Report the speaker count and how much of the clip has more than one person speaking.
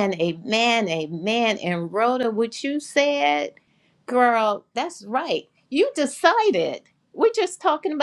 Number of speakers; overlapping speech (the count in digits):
1, no overlap